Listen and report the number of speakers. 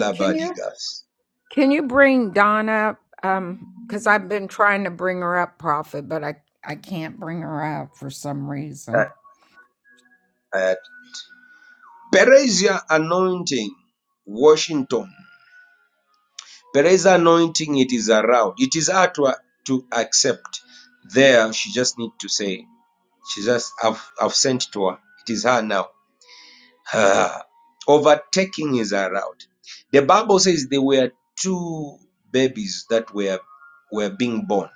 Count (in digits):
2